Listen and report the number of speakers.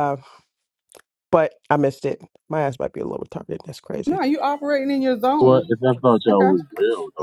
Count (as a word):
three